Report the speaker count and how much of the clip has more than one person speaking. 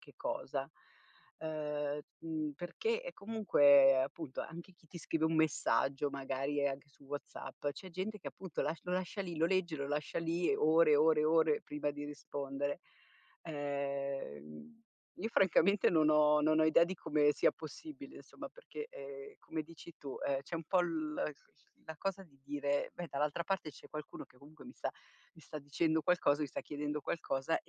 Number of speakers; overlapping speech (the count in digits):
1, no overlap